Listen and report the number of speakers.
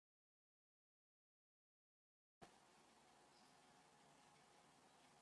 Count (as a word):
zero